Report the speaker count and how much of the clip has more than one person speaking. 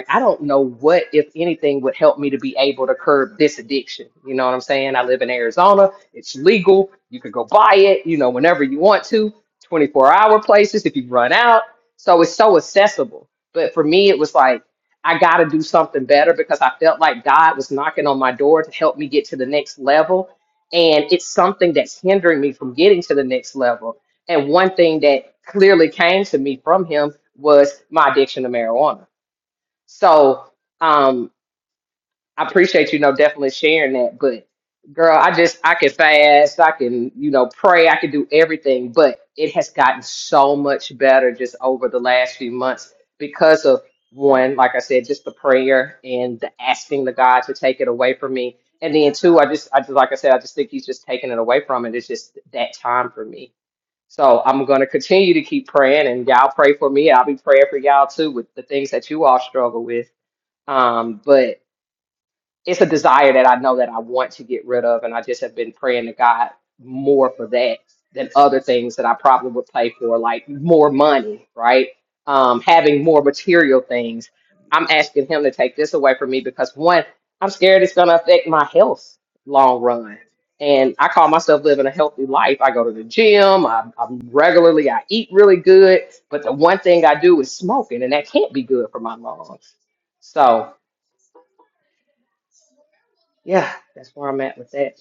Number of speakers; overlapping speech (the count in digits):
1, no overlap